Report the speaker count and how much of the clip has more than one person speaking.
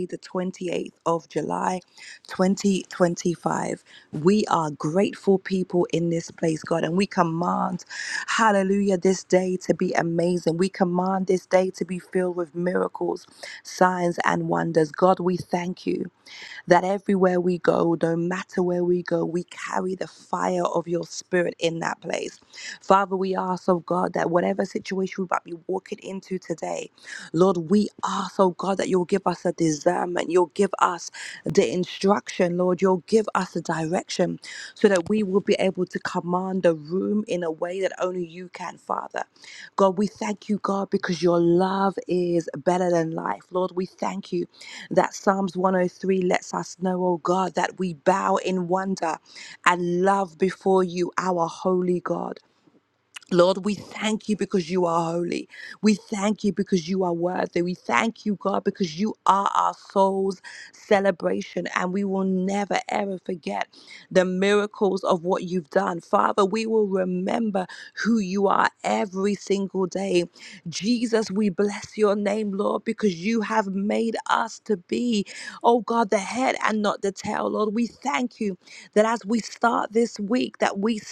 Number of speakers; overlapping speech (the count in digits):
1, no overlap